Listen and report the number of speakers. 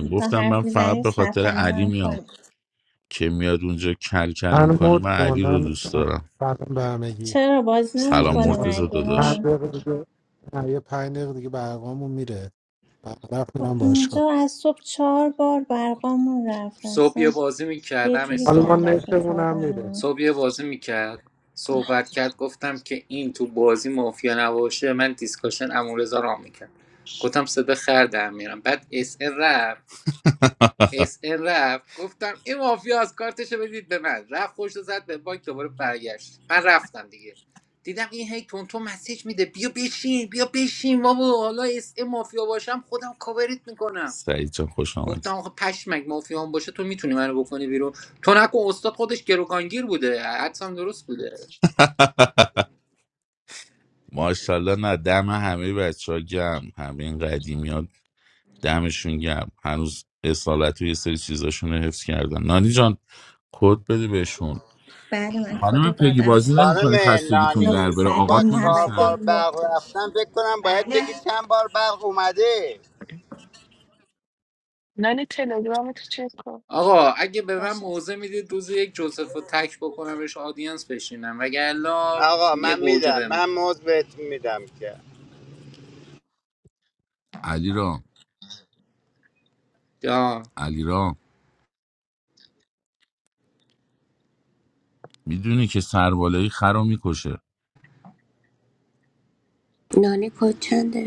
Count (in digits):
7